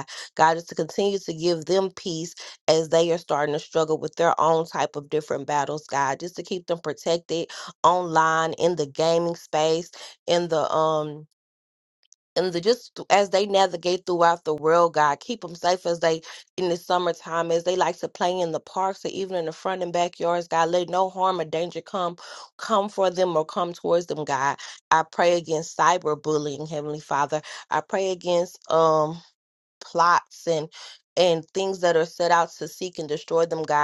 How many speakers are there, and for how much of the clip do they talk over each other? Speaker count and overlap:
one, no overlap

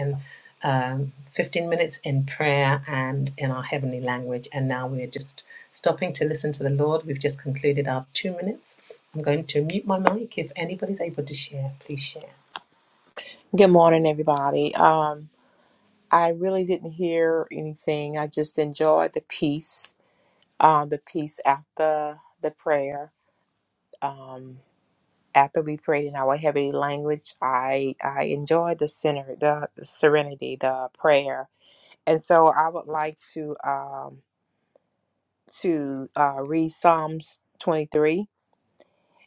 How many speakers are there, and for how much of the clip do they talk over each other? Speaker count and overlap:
two, no overlap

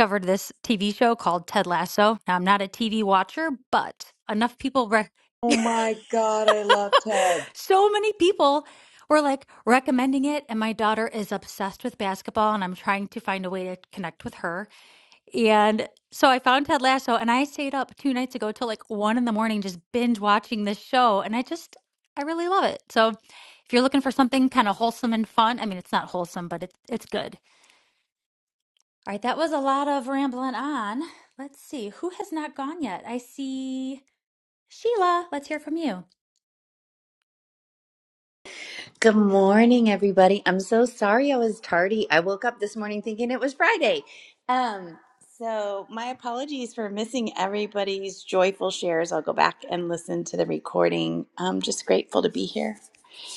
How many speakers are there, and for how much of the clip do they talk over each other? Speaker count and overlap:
three, no overlap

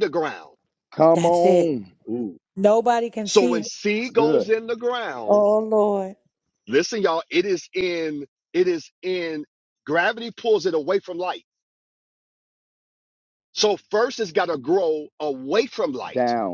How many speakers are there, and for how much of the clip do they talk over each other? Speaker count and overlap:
three, about 9%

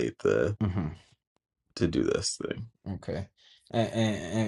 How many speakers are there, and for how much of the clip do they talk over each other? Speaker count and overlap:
two, no overlap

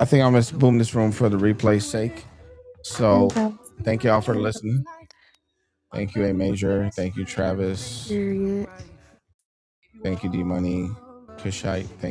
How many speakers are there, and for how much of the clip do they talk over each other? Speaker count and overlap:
two, about 4%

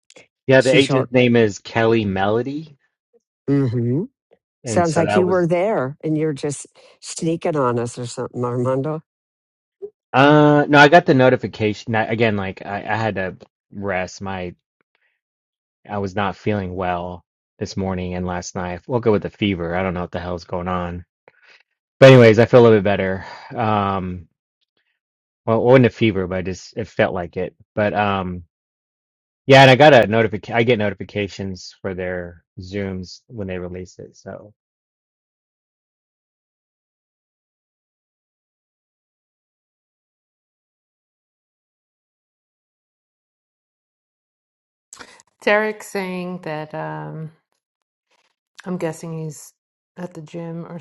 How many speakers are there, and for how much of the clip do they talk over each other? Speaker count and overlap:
three, about 2%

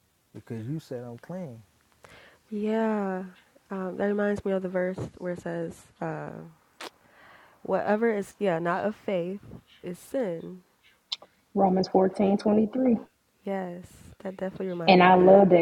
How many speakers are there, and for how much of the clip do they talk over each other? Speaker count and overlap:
three, about 4%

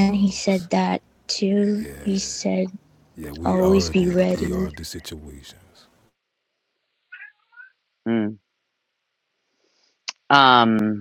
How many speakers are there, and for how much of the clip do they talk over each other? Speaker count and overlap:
three, about 16%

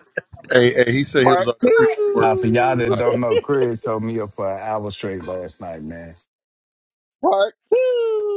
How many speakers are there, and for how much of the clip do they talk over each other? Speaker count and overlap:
three, about 19%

